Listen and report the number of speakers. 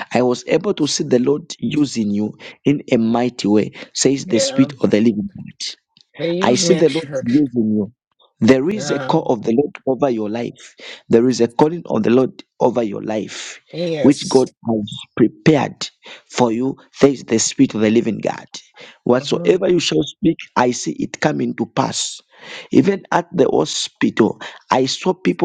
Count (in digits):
2